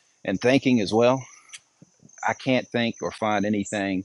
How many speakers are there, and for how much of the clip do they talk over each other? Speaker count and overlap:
1, no overlap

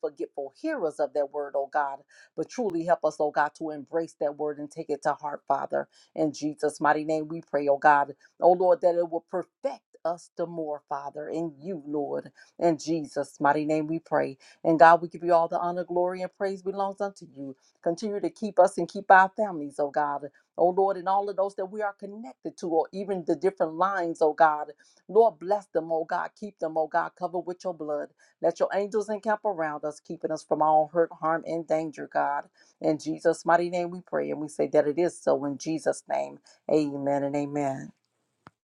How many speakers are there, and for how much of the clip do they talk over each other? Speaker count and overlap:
1, no overlap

